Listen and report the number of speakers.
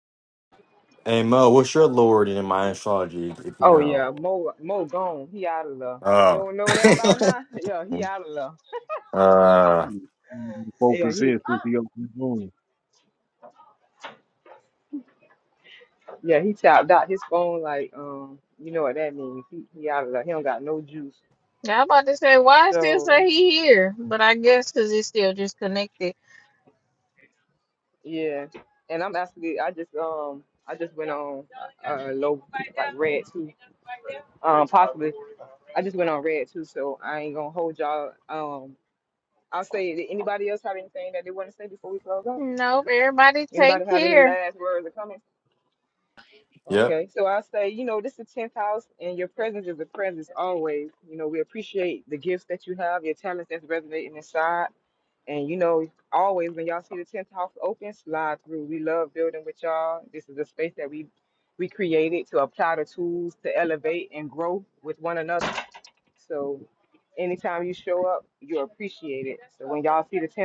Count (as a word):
four